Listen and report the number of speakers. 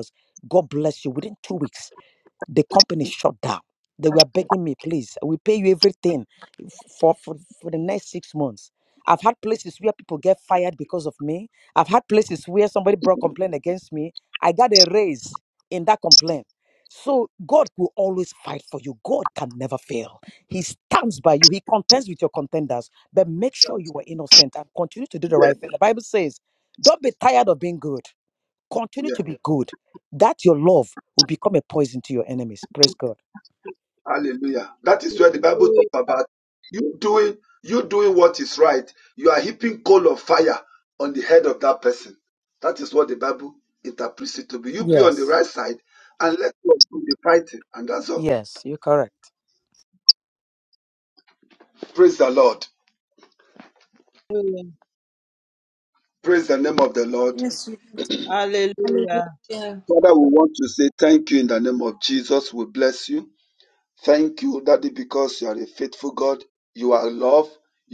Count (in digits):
4